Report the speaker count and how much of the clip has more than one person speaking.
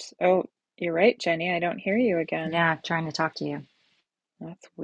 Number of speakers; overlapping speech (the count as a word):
two, about 2%